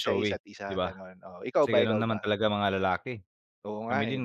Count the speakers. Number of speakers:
2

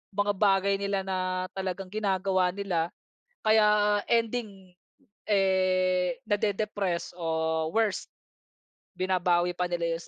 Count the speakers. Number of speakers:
1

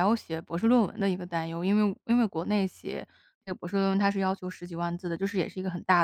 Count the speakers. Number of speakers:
1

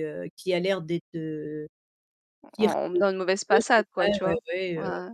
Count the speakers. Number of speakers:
2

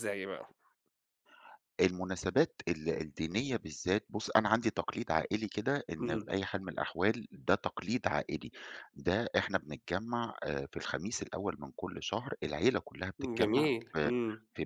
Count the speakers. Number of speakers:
2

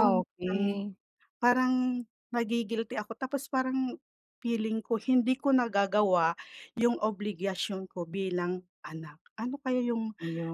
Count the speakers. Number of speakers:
2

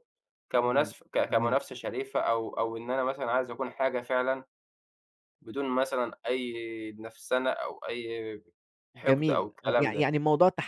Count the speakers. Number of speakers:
2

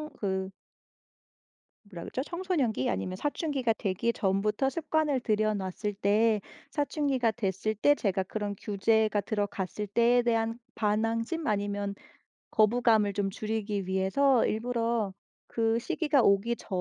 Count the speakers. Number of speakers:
1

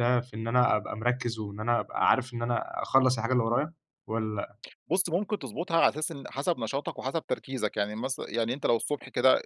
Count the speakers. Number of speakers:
2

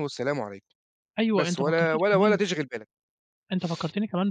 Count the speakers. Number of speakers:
2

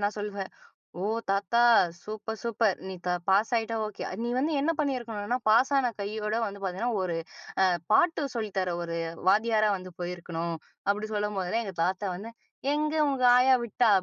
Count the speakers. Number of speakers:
1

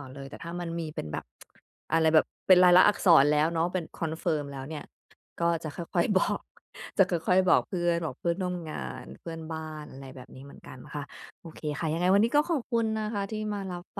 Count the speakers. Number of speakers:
1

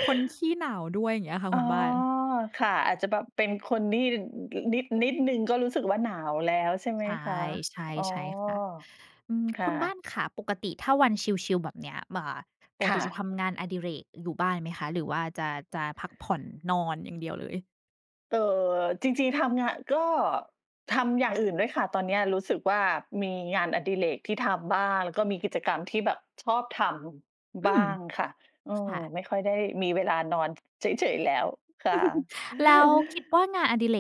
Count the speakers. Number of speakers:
2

